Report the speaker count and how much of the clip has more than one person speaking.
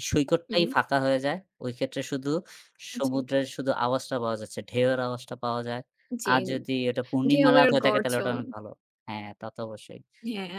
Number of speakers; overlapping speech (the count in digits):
2, about 15%